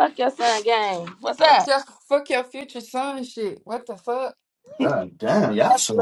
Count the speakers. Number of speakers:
three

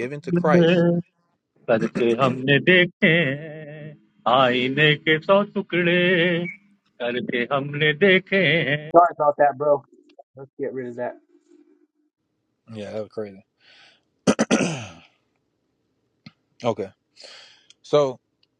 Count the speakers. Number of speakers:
three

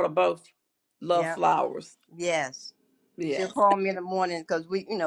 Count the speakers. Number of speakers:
two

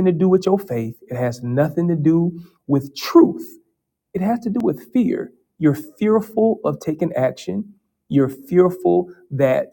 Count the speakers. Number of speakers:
one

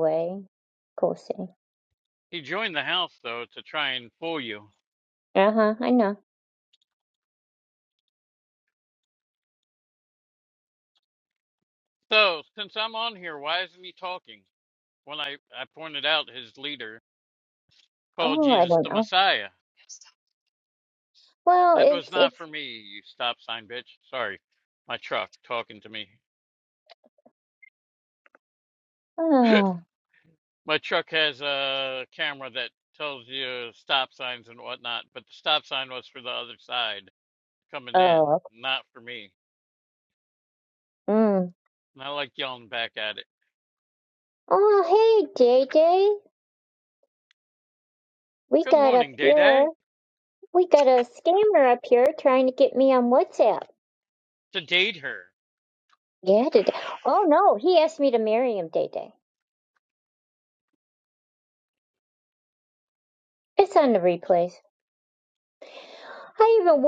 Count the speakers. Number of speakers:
two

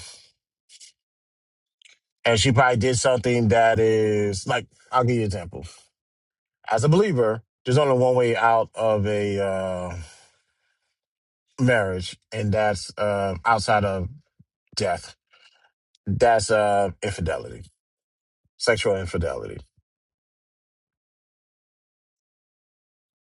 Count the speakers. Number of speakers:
one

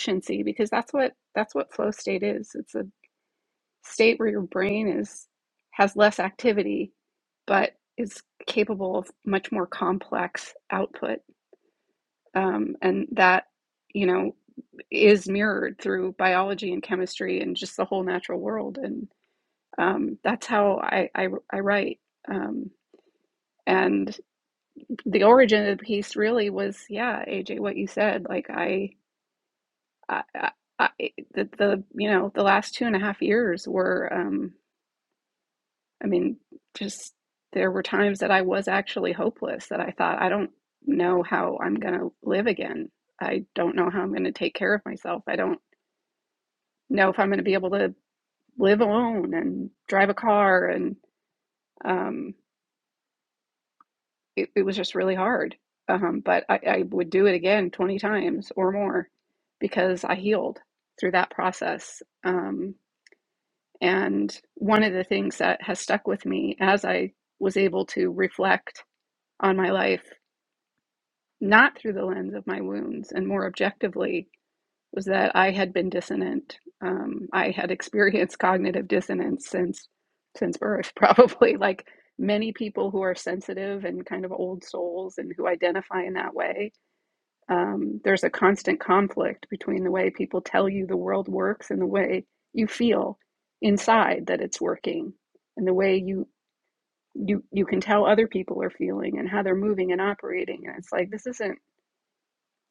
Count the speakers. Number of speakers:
one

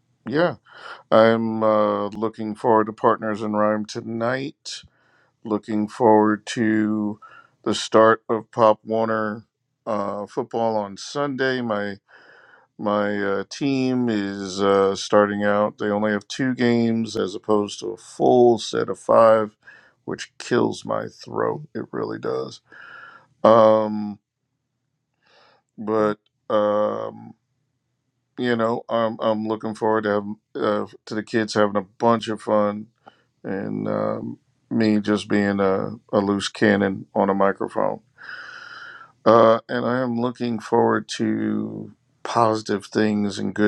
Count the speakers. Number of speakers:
one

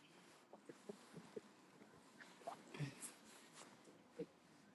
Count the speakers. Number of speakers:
zero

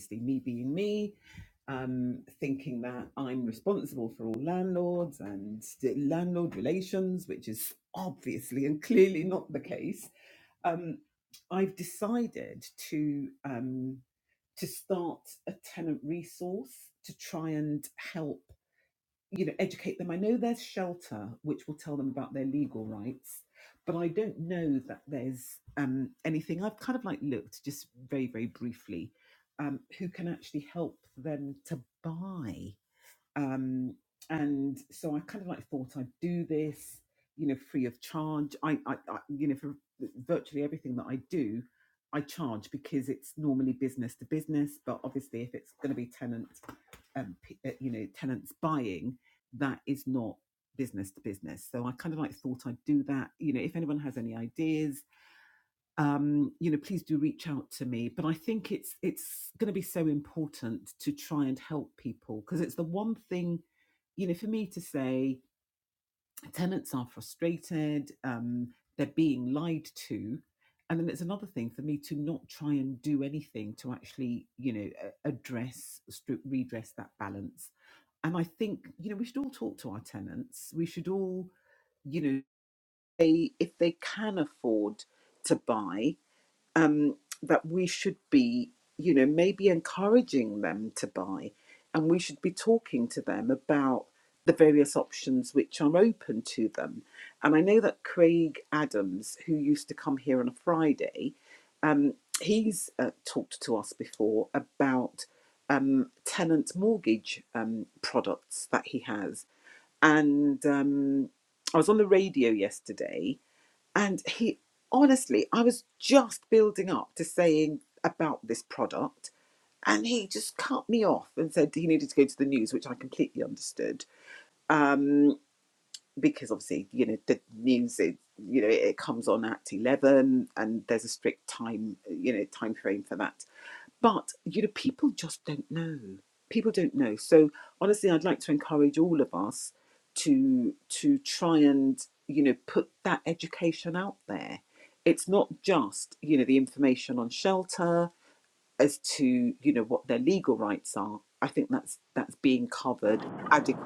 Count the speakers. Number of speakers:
one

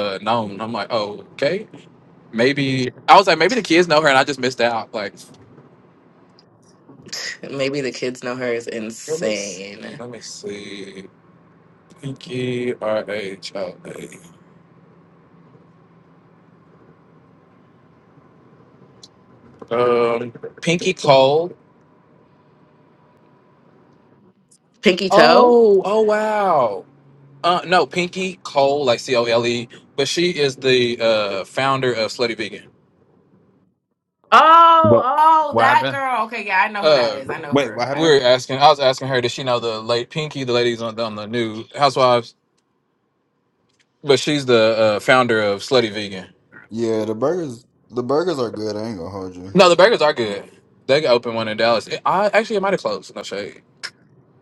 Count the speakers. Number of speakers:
three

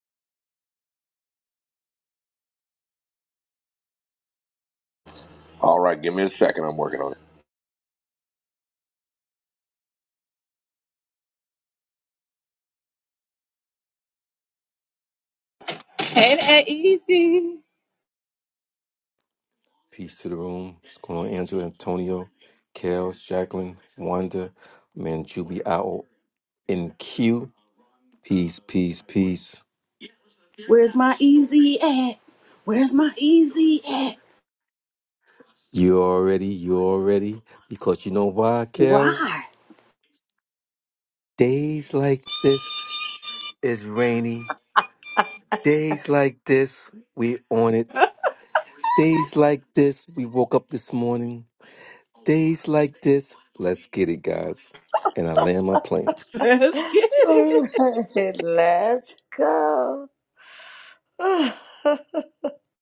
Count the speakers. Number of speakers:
five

